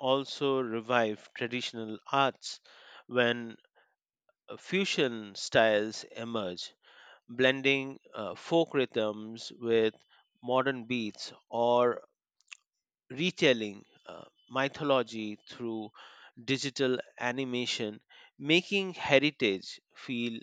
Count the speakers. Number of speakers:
1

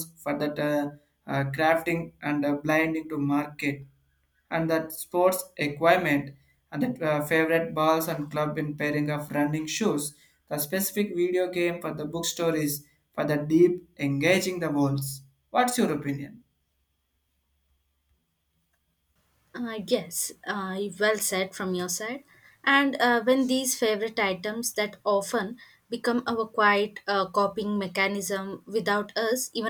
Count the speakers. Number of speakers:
2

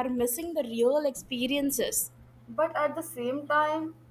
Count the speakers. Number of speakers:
2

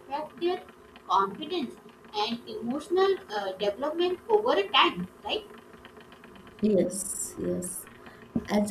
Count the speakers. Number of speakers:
2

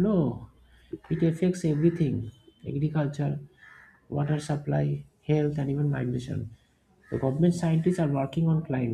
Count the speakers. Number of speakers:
1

